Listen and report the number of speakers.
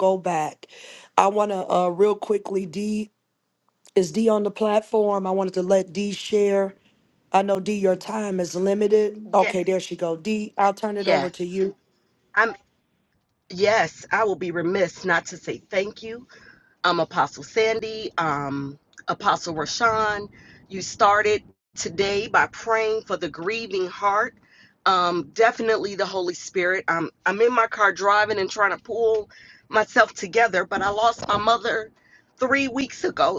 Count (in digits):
2